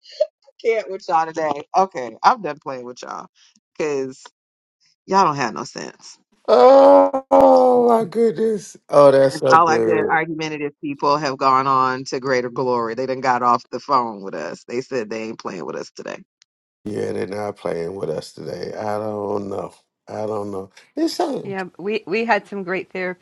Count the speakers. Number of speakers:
3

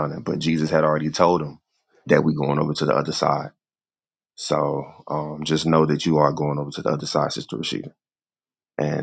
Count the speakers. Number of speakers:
1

